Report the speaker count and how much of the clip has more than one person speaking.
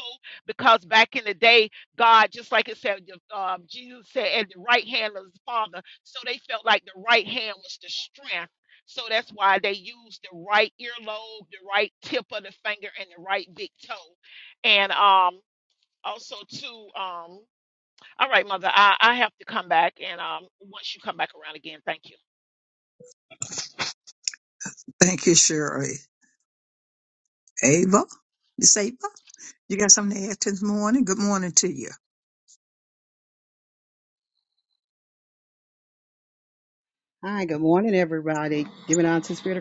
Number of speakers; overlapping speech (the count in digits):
3, no overlap